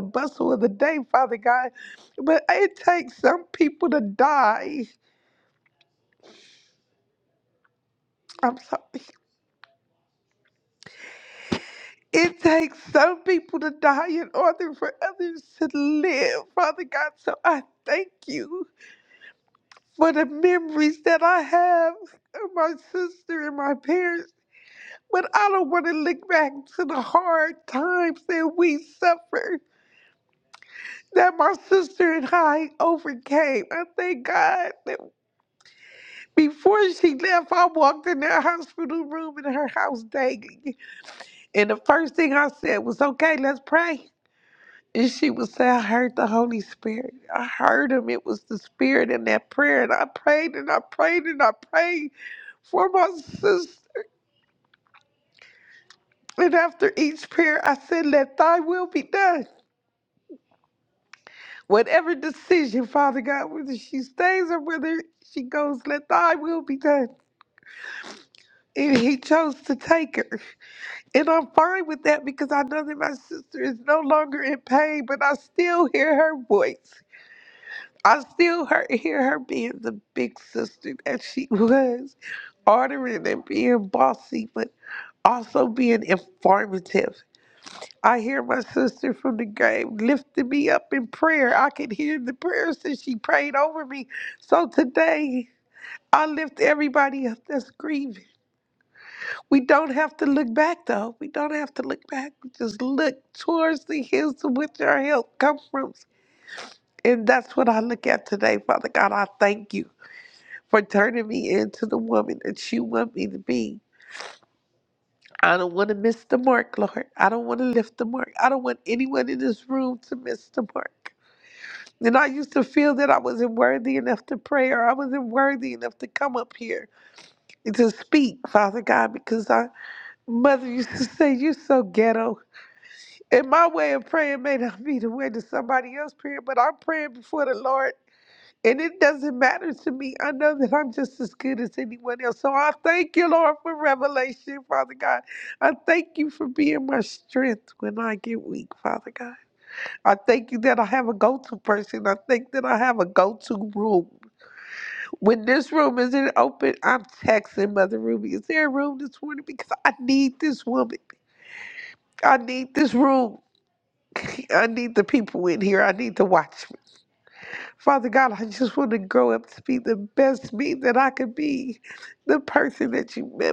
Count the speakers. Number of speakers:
1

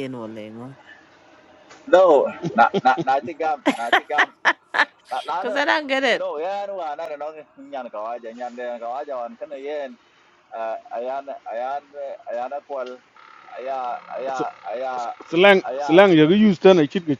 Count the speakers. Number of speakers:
3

